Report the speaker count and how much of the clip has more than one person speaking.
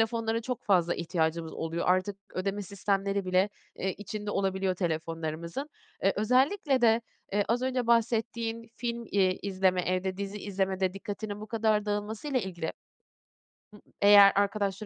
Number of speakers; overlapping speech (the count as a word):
one, no overlap